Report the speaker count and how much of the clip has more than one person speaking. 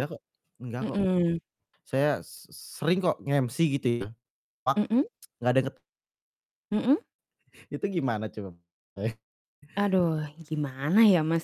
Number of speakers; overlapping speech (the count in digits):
2, about 2%